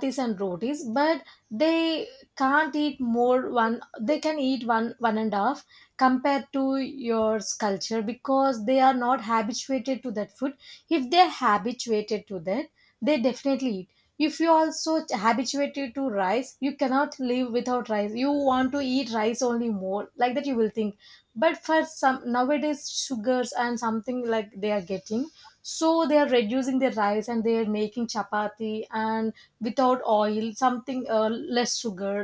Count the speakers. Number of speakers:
1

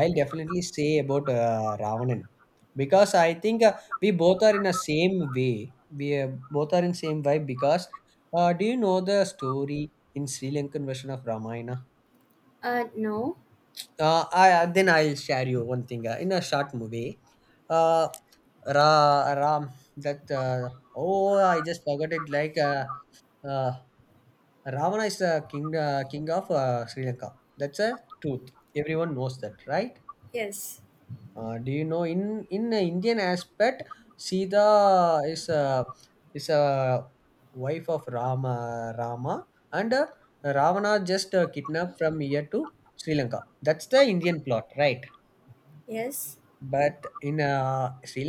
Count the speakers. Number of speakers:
2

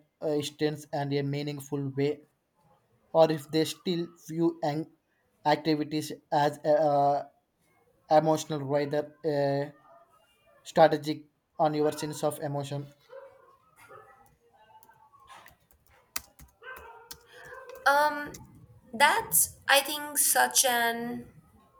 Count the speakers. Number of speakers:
2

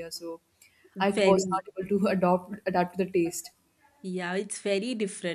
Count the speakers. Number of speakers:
2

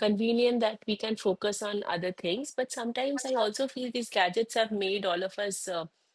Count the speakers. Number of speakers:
1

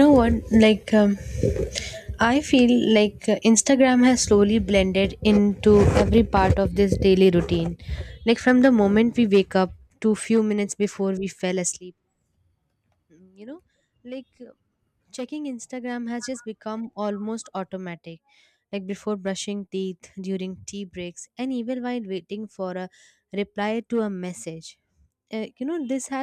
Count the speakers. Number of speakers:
1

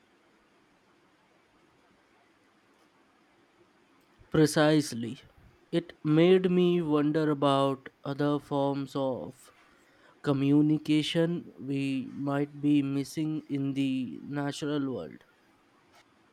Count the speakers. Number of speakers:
1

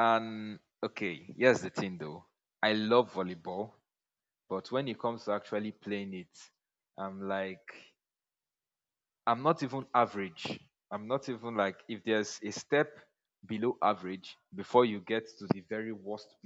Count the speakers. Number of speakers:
1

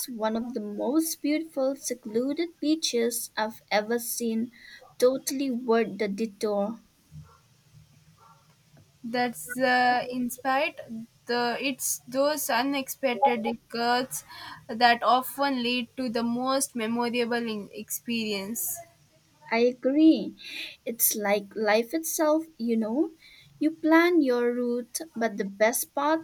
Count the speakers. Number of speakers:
2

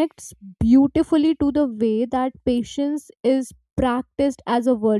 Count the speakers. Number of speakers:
1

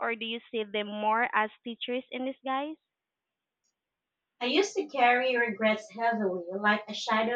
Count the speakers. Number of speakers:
2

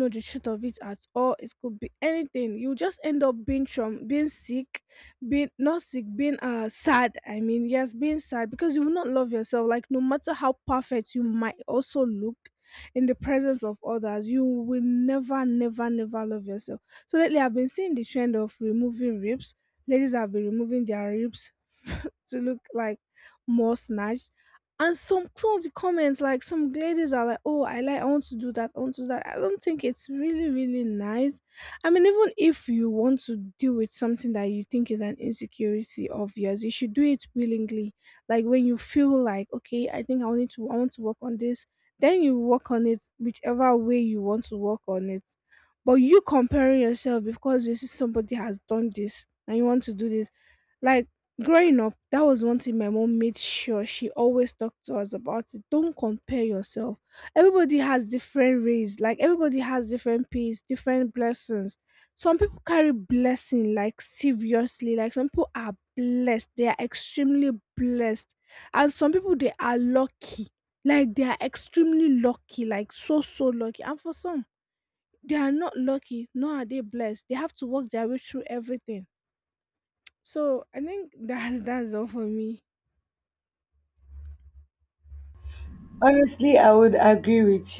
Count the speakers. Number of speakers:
2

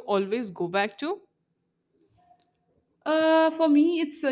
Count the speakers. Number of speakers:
2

